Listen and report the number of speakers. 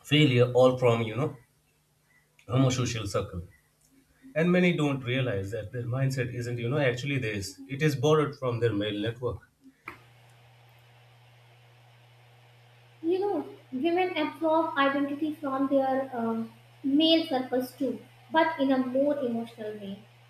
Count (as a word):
two